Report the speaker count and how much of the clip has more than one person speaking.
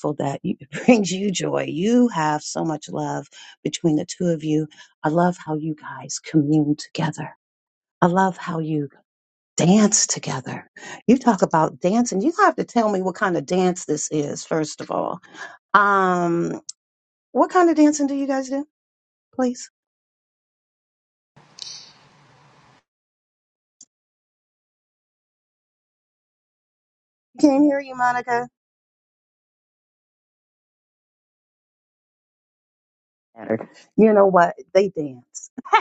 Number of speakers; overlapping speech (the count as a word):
one, no overlap